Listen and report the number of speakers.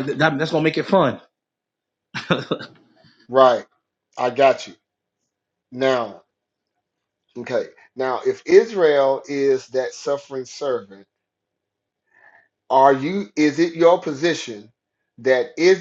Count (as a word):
two